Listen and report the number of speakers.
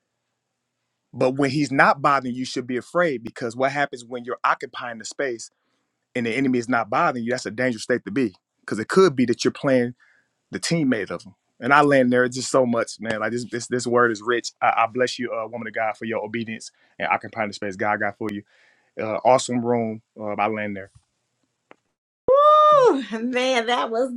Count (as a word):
two